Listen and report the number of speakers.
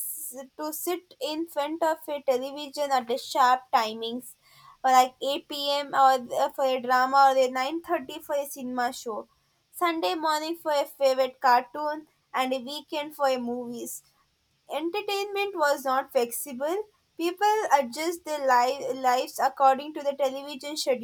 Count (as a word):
one